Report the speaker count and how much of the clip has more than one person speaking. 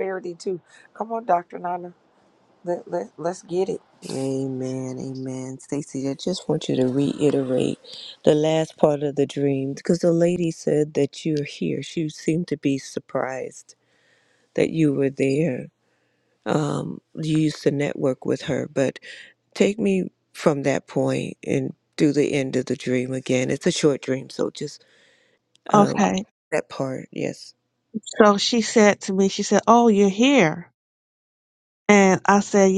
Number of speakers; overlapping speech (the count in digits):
3, about 1%